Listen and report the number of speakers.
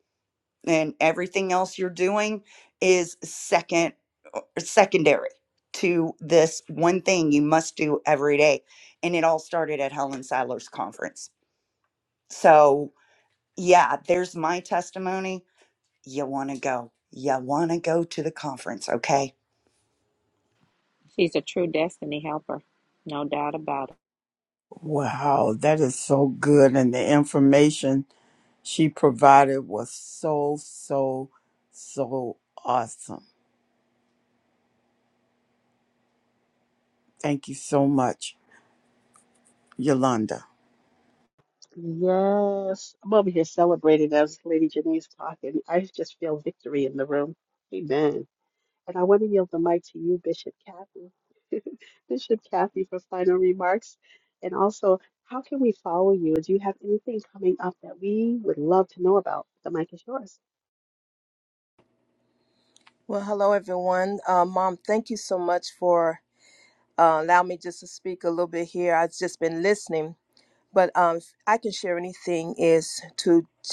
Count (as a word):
five